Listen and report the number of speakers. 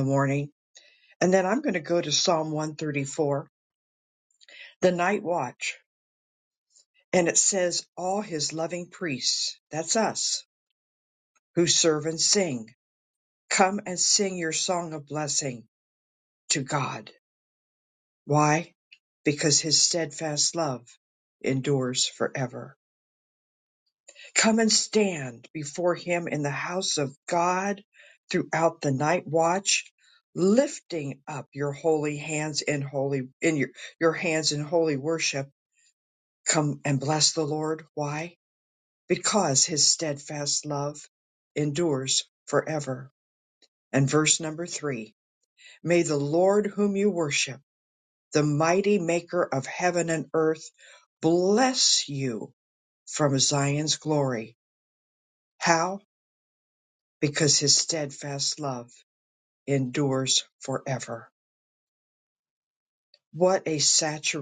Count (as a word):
one